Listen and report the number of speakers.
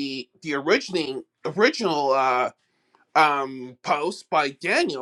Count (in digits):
1